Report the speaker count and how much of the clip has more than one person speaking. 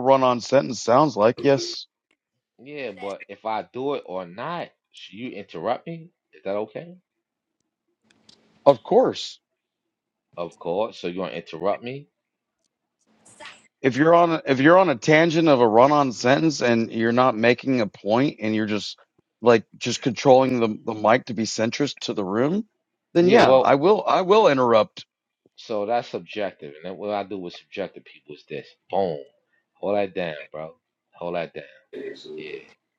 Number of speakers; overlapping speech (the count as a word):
two, about 2%